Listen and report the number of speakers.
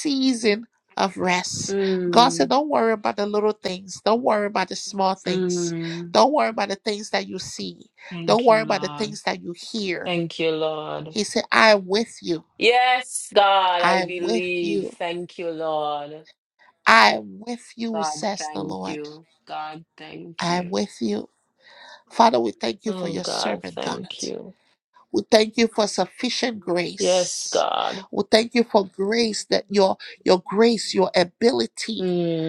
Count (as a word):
two